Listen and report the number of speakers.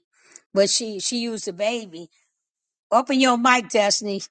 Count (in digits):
1